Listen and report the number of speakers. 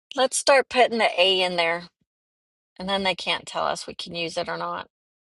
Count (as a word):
one